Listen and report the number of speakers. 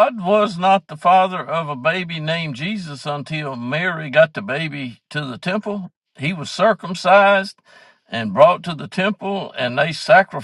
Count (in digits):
1